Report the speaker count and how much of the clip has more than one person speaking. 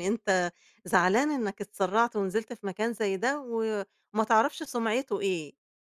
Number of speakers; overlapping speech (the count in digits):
1, no overlap